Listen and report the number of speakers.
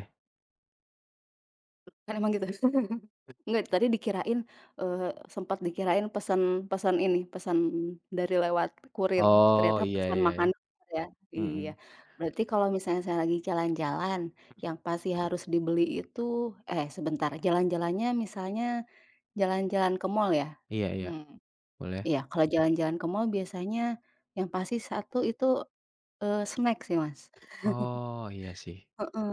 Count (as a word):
two